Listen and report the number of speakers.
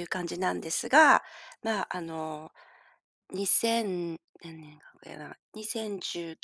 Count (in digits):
1